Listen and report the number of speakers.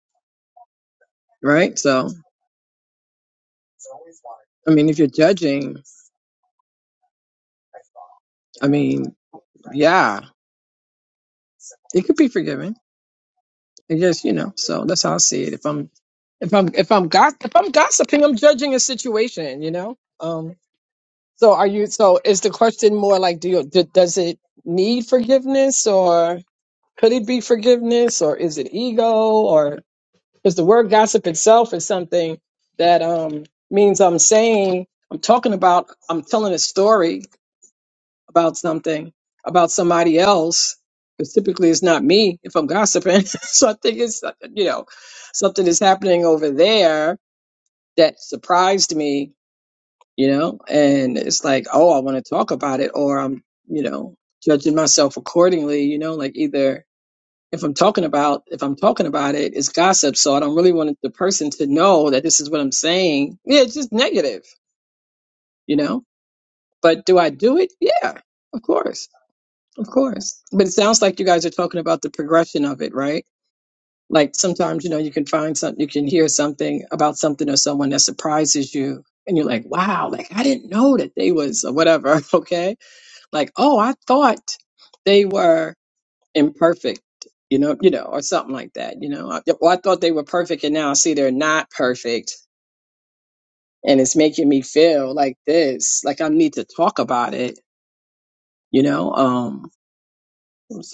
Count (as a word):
one